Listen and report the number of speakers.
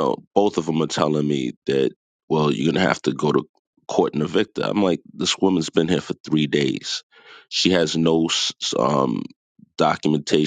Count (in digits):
1